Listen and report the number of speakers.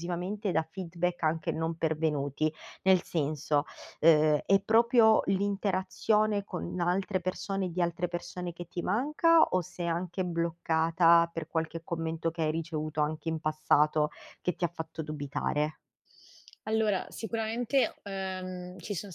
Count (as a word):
two